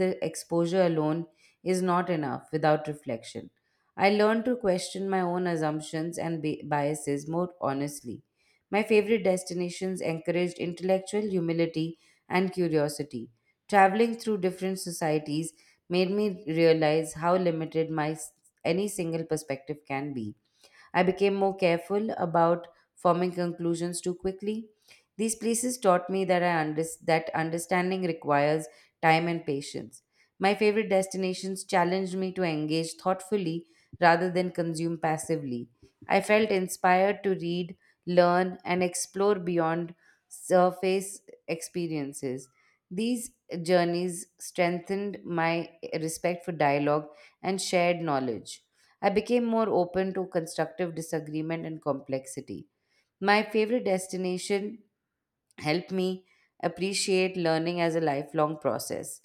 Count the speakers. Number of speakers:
one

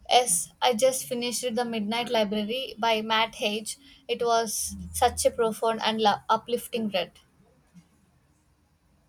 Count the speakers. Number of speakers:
one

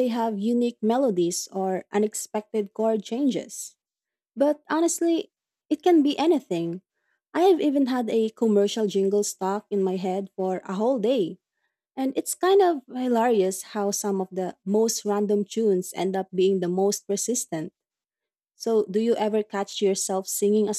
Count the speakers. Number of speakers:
one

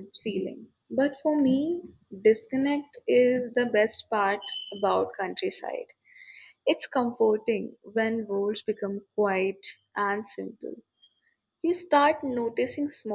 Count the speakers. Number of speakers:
one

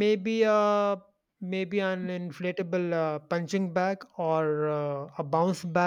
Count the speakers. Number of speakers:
one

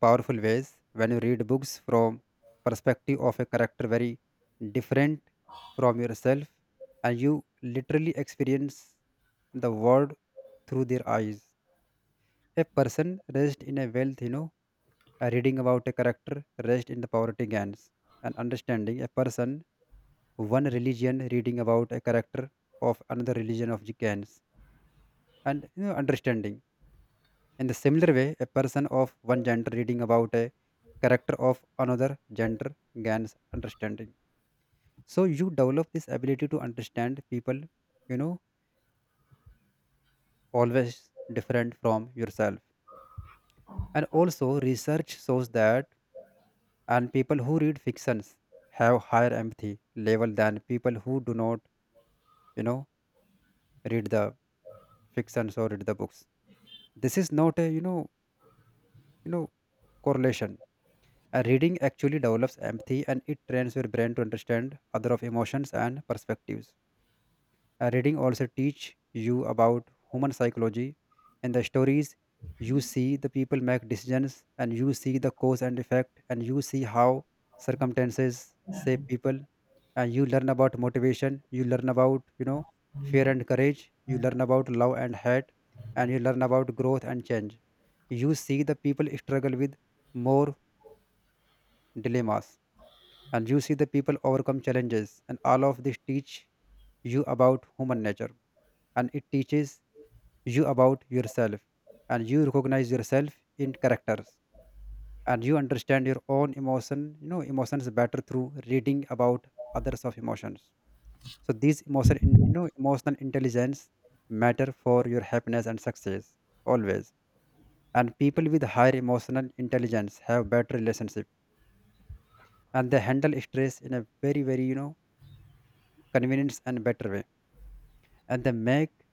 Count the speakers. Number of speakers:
one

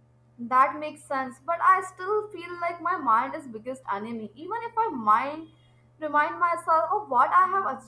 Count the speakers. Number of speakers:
one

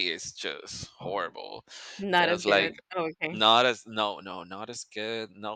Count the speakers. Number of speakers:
two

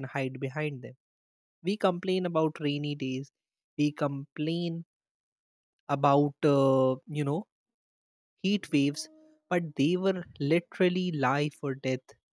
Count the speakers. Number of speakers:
one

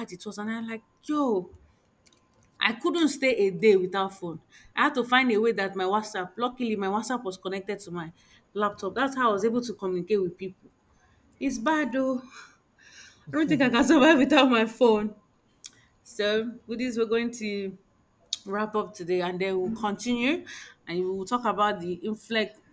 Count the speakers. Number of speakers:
one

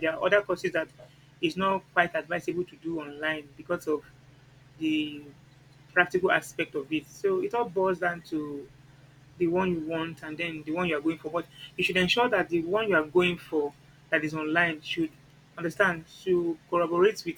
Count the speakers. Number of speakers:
one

